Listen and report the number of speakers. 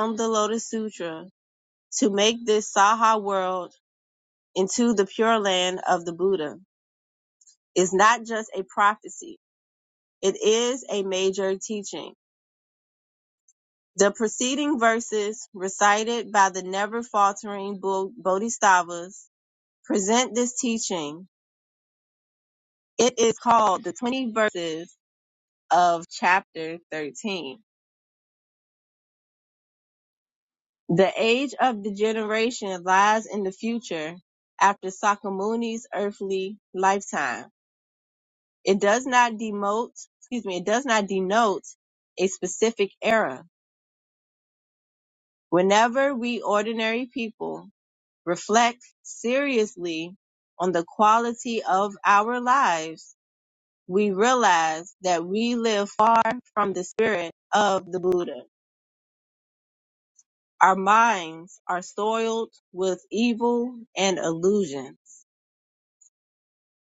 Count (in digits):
1